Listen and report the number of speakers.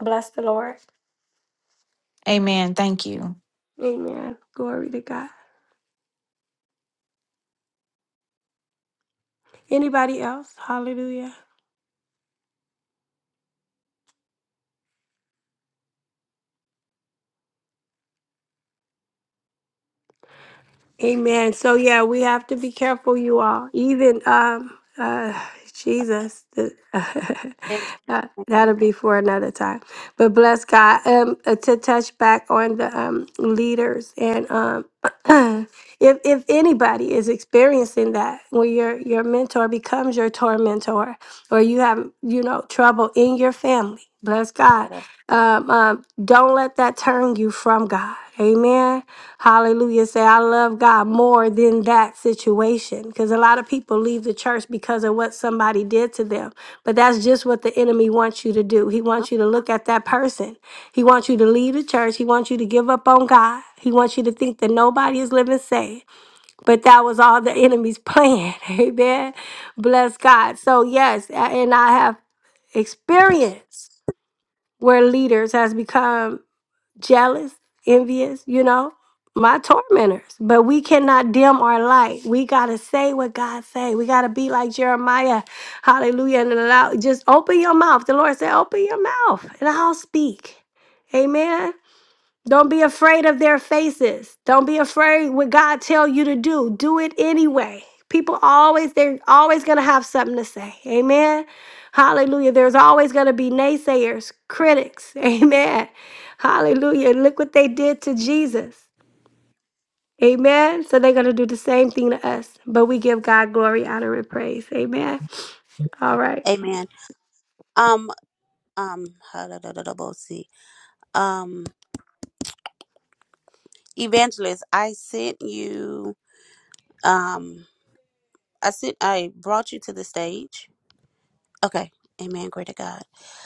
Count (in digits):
3